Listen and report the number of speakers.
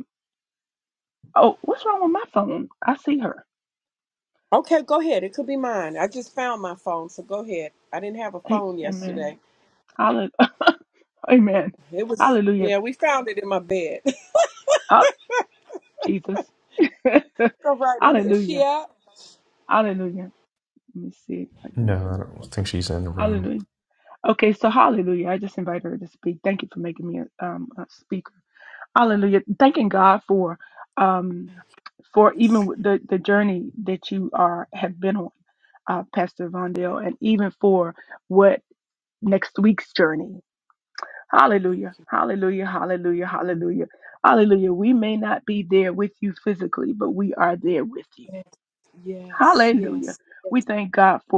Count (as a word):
three